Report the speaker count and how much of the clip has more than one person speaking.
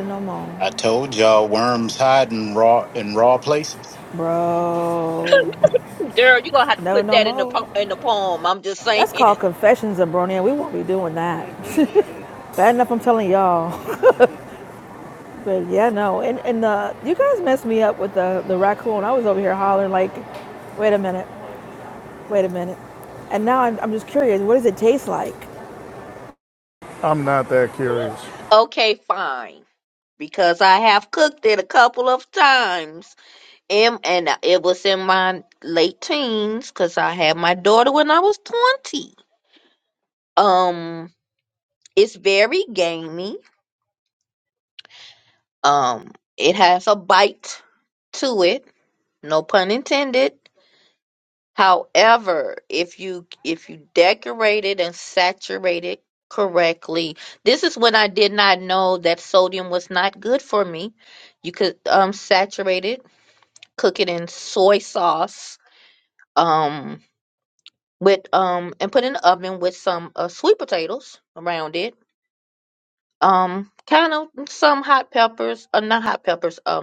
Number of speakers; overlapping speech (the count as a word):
four, about 2%